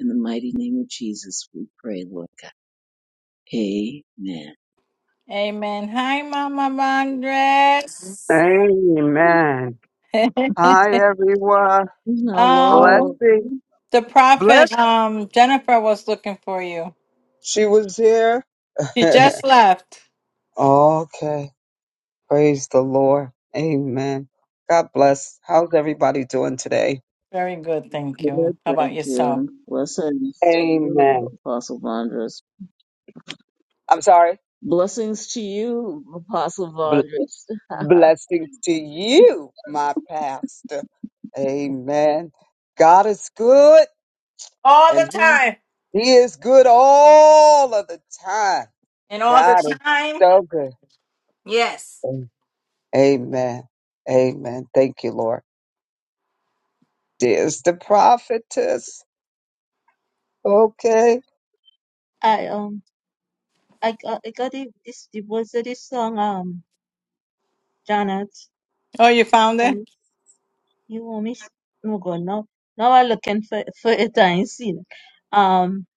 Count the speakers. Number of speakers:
4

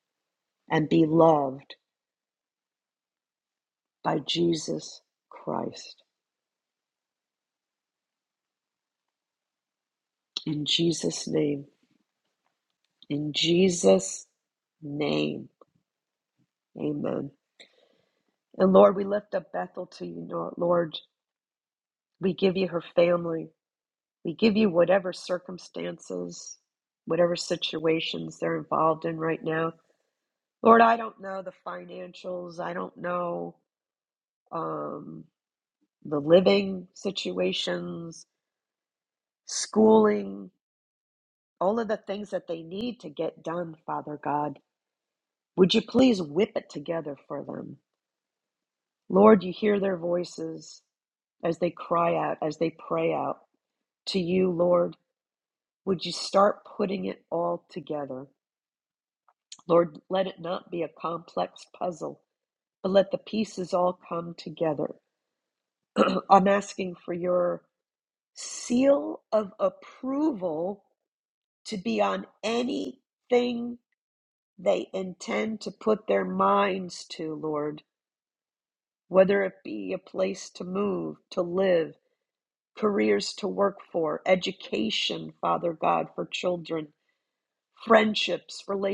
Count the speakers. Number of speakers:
1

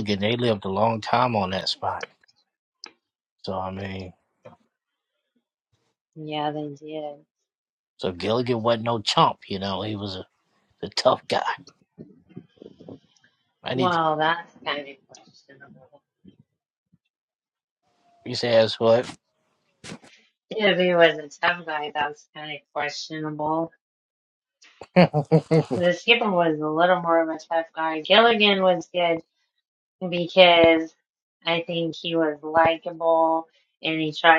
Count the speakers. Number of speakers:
2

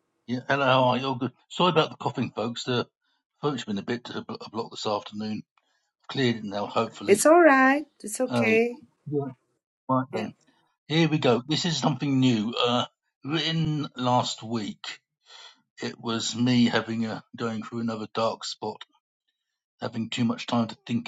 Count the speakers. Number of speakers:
2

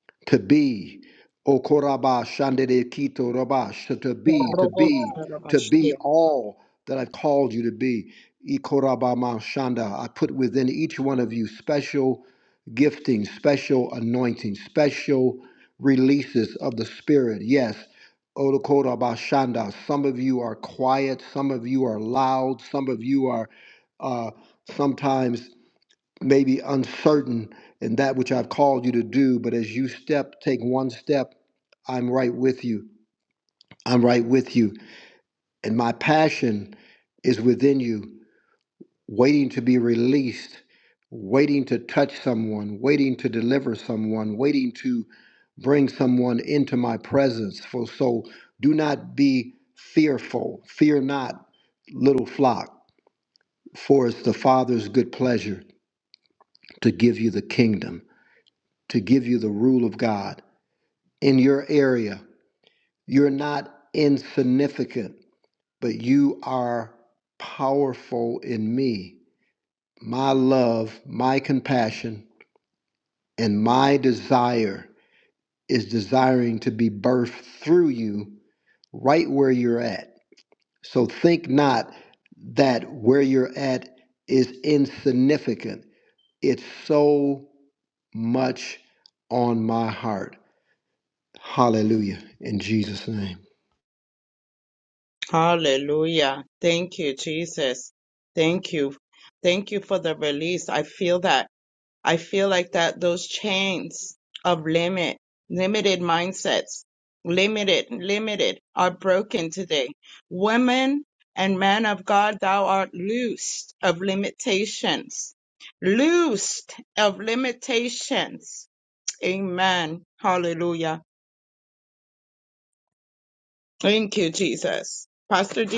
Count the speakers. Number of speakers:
2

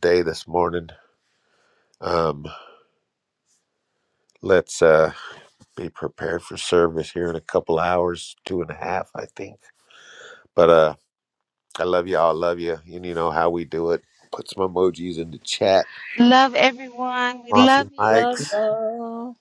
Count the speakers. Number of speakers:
3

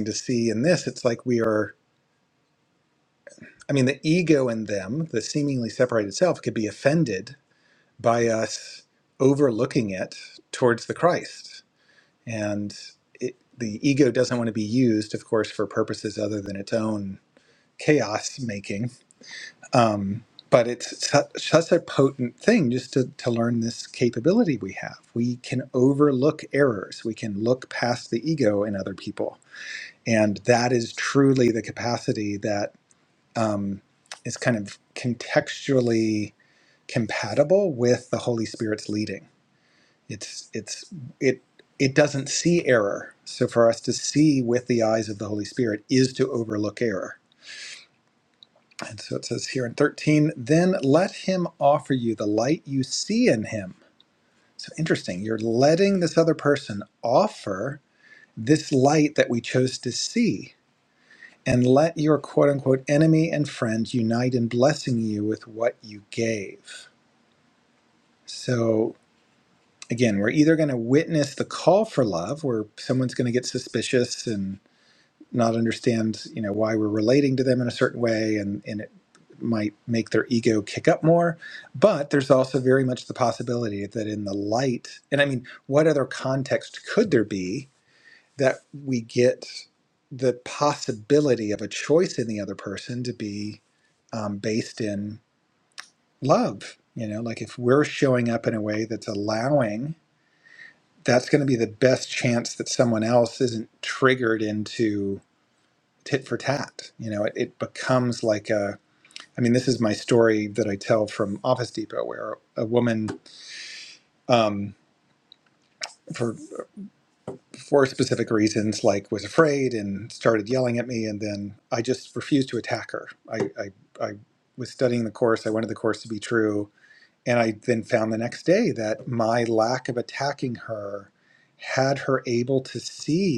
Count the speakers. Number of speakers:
1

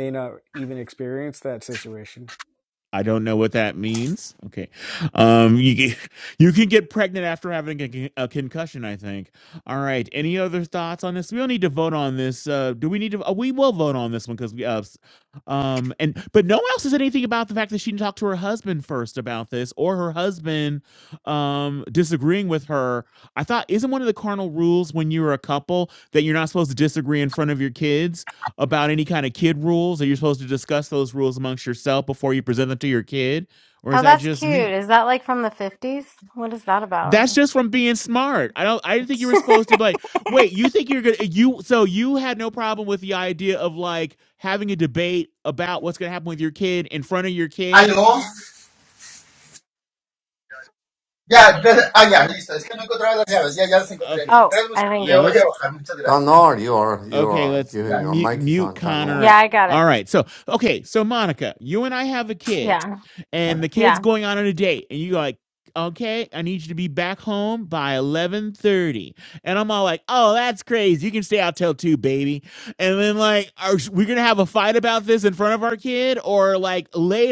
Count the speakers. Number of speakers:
5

